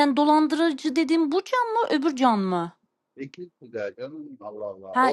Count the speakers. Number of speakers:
2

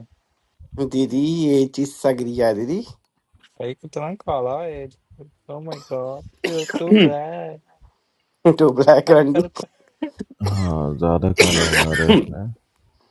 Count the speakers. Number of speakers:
3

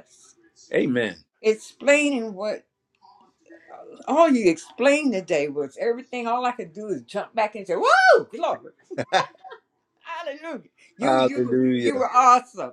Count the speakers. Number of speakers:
2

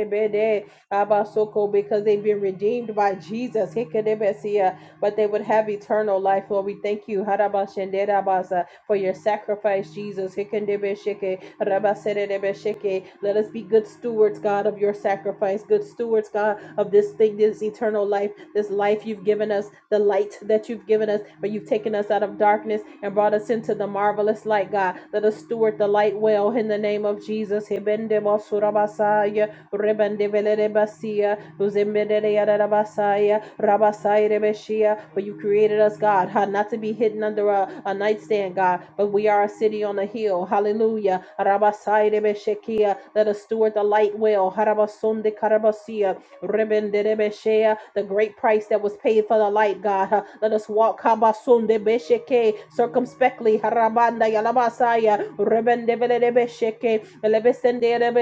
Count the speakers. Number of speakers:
1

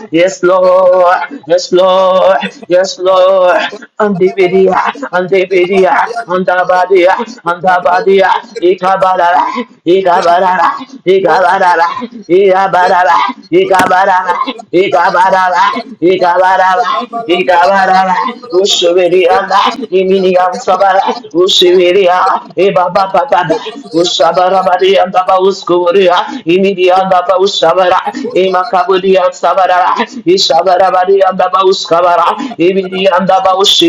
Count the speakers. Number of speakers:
2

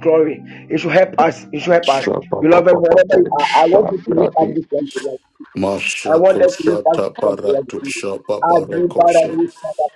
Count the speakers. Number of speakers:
2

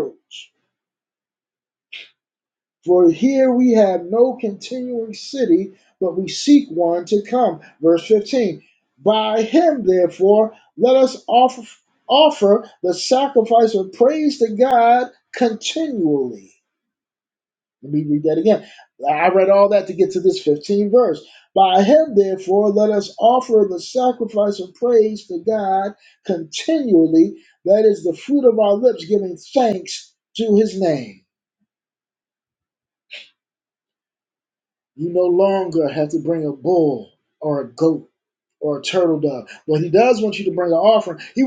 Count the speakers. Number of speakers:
1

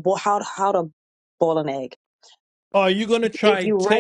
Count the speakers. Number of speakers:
2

